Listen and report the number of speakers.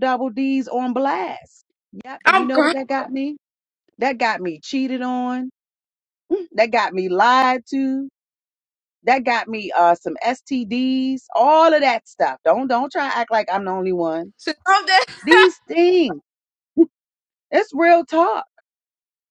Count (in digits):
2